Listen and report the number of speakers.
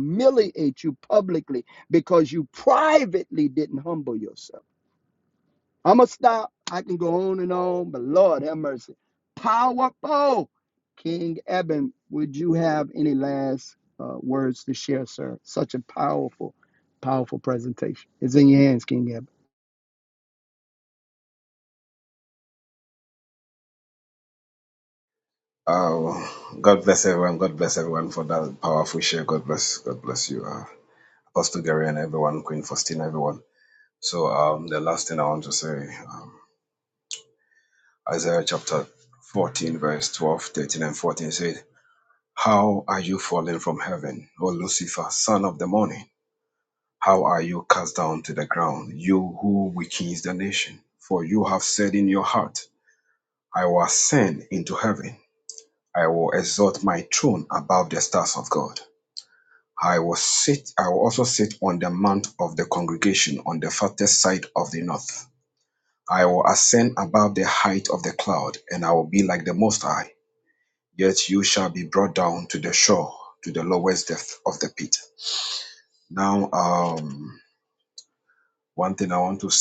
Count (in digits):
2